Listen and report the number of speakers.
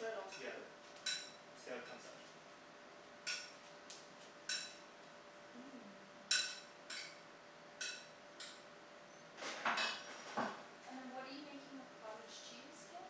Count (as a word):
two